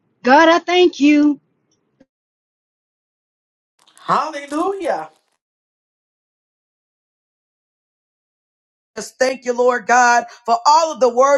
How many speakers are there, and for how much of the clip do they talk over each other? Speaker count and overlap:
3, no overlap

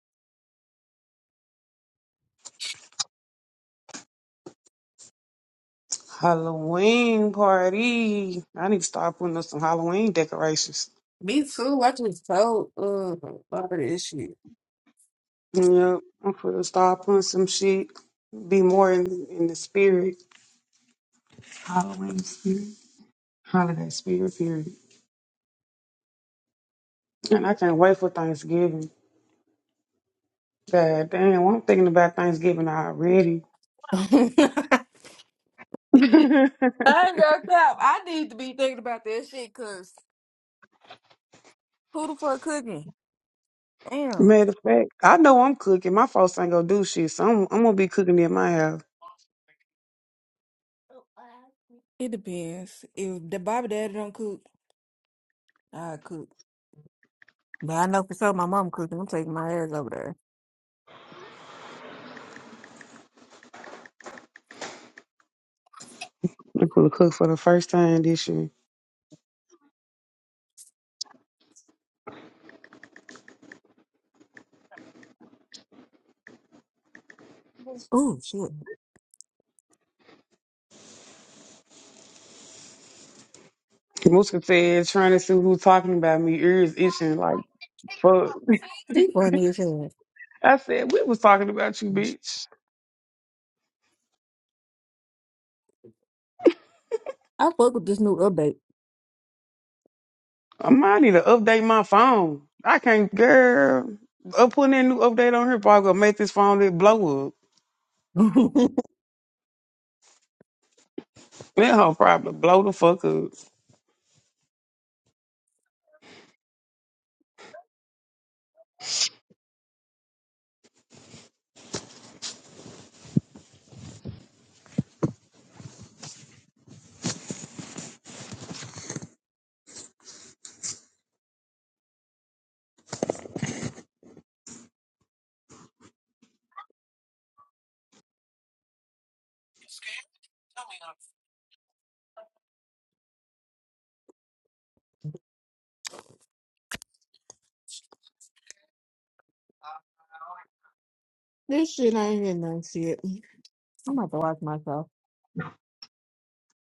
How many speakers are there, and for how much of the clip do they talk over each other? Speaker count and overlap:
2, no overlap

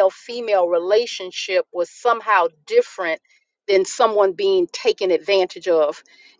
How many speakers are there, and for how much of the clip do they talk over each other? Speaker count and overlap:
1, no overlap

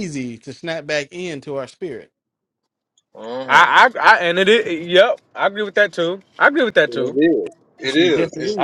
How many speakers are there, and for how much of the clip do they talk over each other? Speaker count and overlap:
3, about 15%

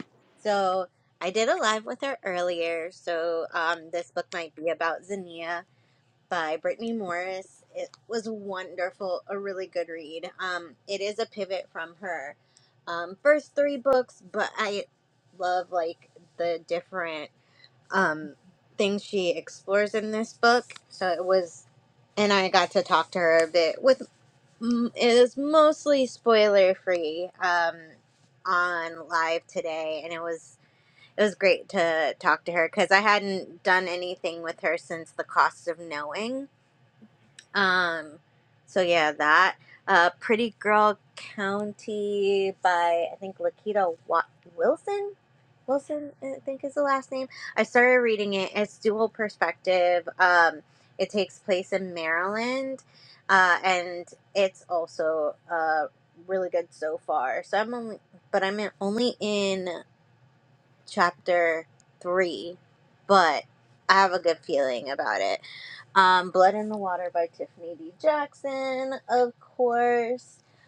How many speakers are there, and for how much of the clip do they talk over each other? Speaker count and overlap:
1, no overlap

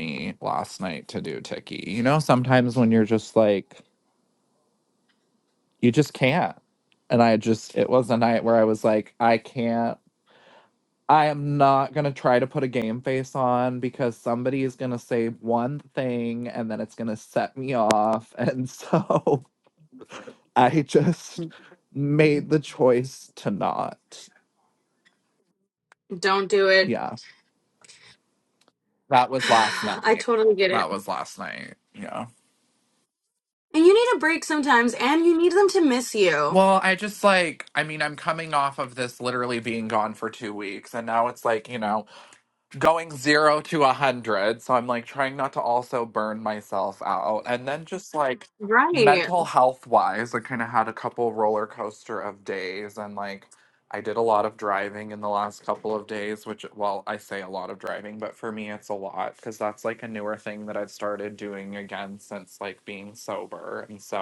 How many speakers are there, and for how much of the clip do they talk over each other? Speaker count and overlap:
2, about 2%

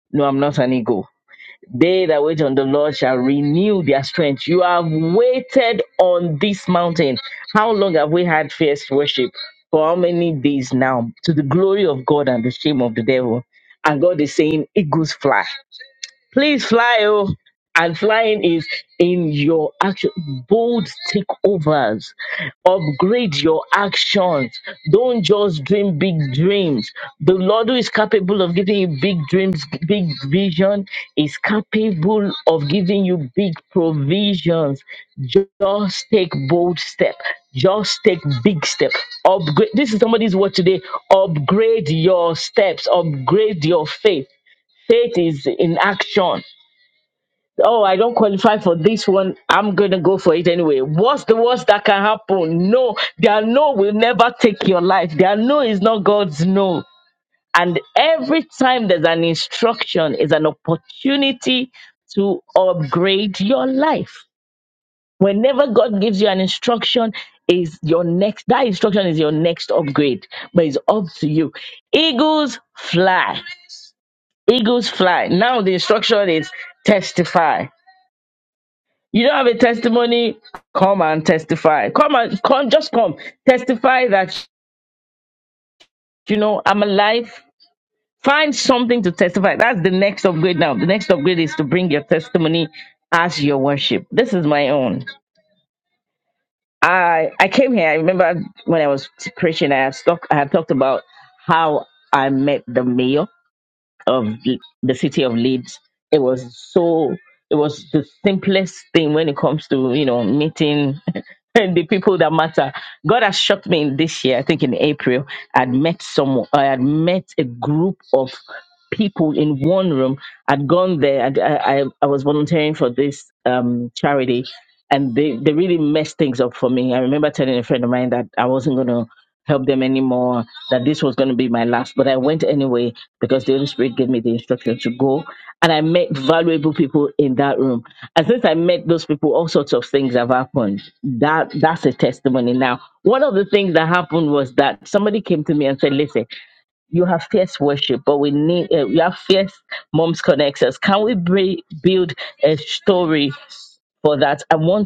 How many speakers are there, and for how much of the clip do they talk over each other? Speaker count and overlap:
1, no overlap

